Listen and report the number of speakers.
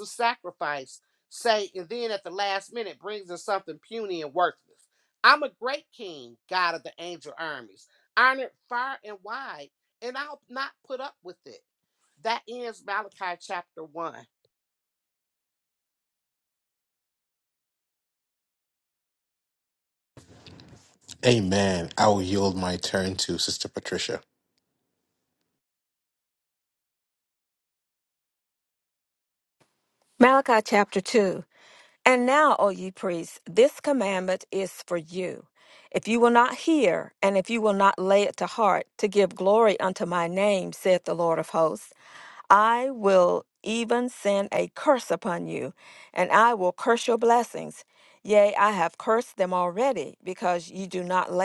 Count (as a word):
three